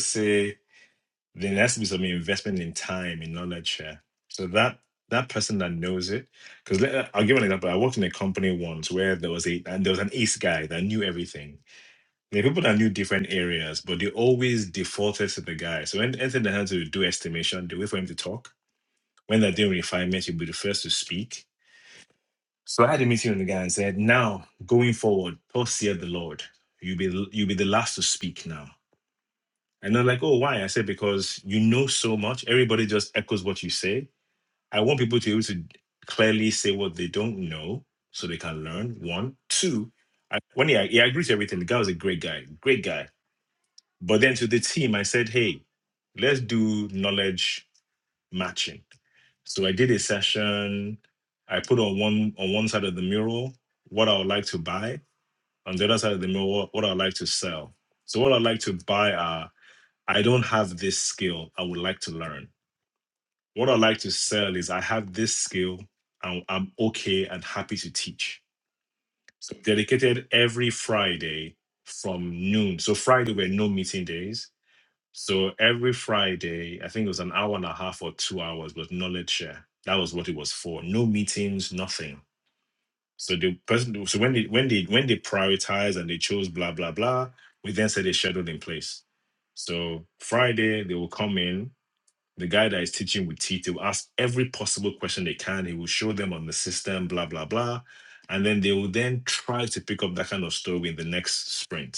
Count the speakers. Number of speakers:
1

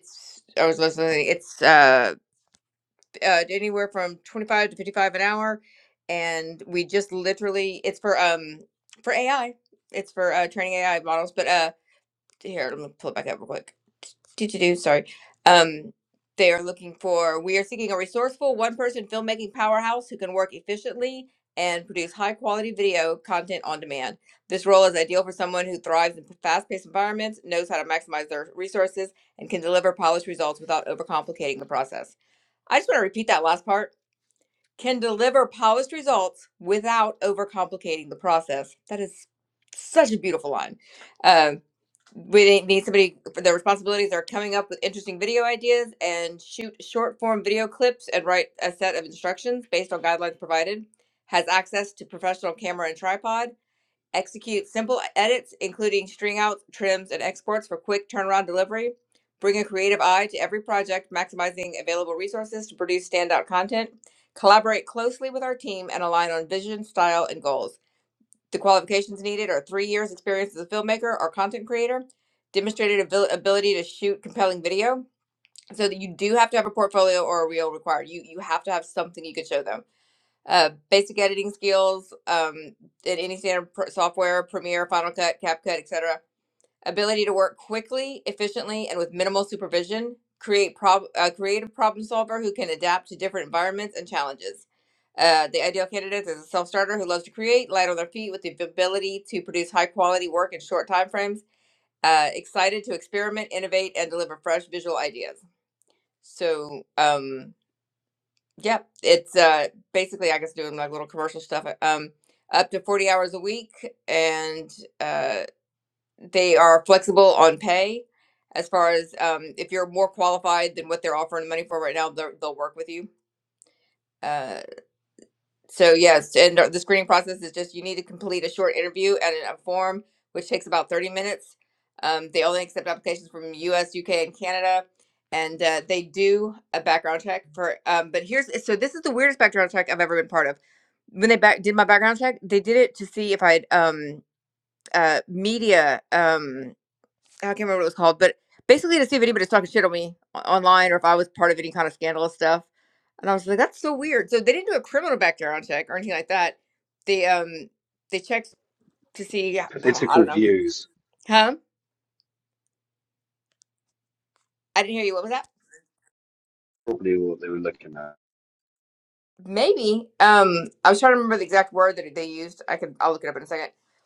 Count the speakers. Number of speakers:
2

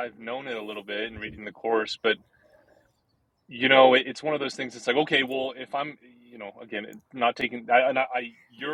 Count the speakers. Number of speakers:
1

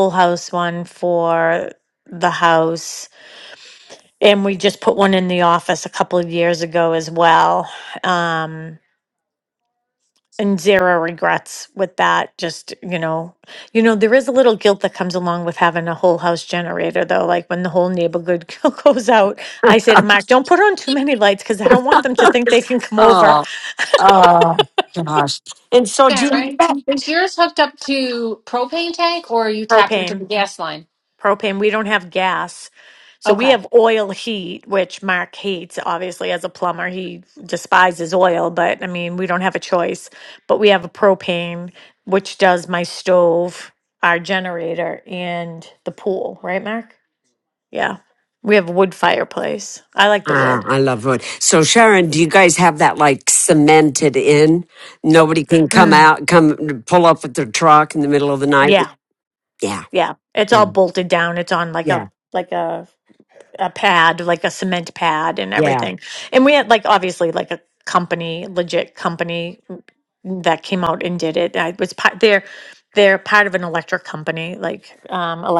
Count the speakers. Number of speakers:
3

